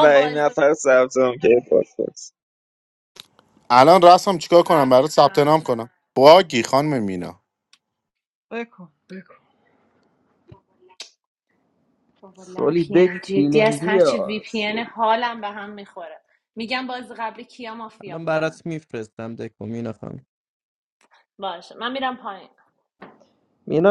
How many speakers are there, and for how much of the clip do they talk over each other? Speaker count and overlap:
5, about 18%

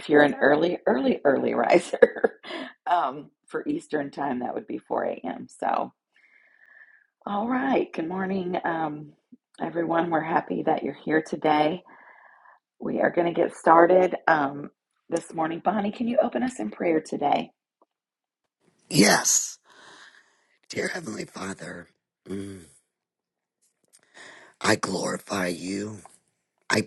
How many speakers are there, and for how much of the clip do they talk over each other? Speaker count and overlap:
2, no overlap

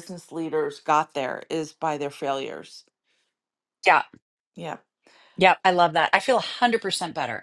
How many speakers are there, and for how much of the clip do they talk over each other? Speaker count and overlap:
2, no overlap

